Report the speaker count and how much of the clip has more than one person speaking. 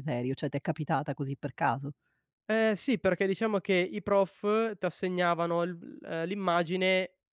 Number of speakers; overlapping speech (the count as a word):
two, no overlap